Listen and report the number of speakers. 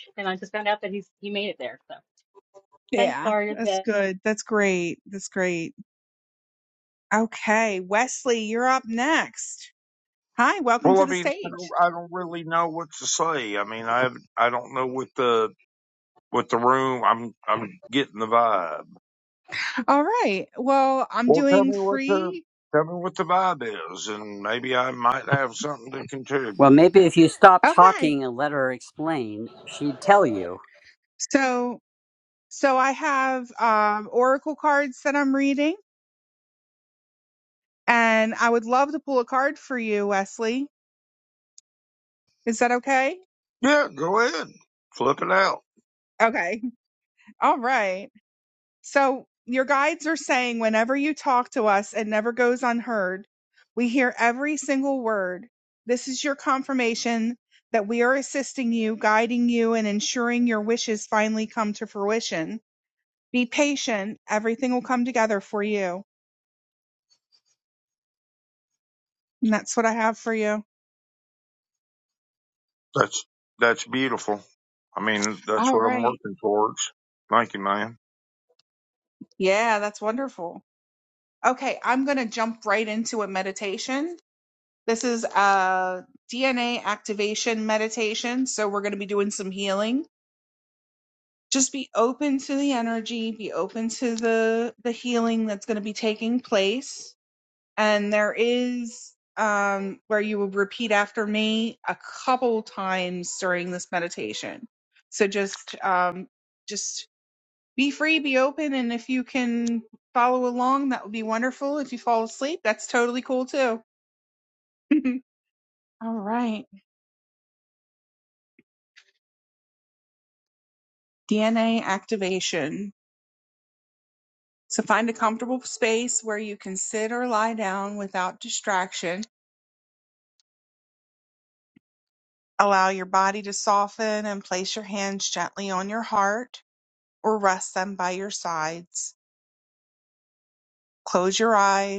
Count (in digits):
4